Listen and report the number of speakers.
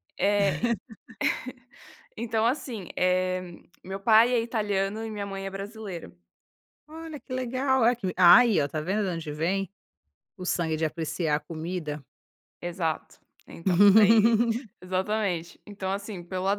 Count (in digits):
2